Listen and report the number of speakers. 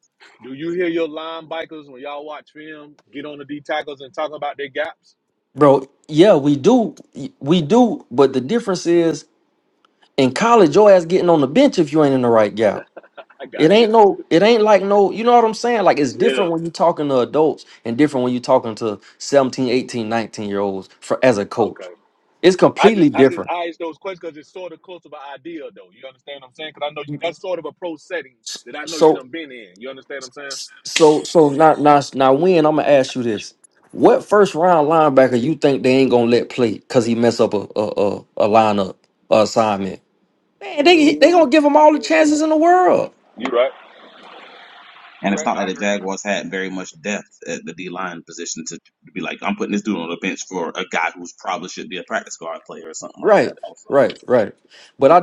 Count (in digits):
3